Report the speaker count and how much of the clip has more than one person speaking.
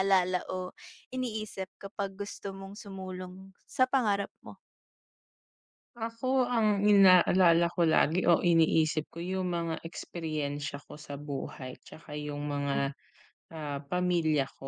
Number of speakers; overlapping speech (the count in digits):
2, about 1%